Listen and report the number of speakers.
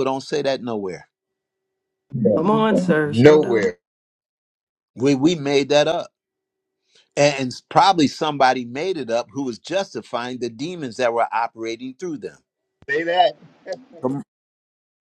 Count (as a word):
three